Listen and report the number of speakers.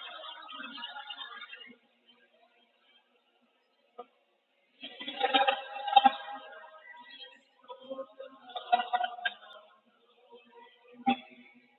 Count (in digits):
0